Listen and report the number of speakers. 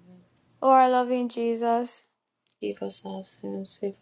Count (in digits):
2